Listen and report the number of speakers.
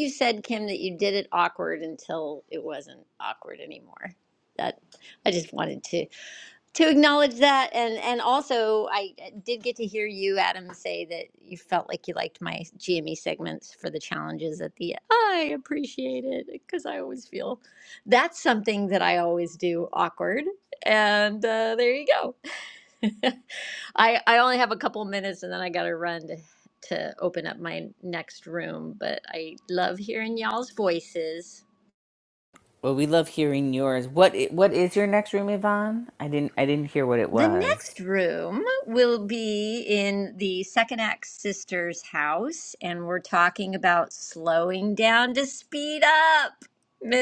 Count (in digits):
2